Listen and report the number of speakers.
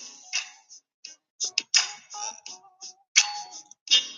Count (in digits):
0